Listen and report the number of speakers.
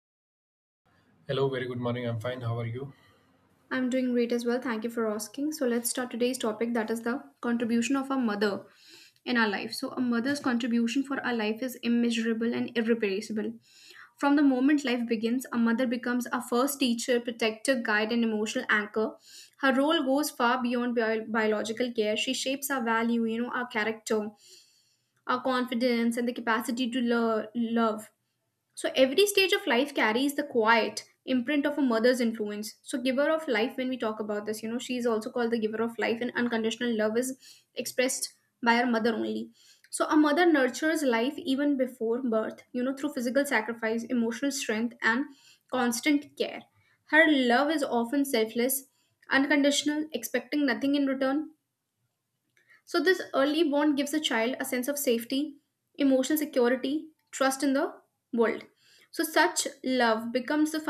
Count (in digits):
2